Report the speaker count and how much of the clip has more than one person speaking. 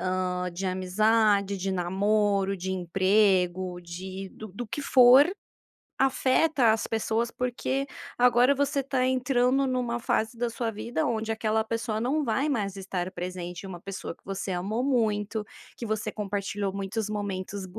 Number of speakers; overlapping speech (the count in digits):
1, no overlap